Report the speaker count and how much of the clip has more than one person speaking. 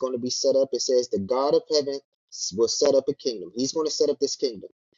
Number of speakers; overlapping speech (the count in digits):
1, no overlap